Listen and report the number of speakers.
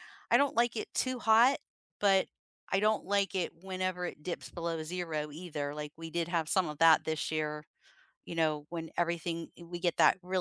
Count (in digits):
1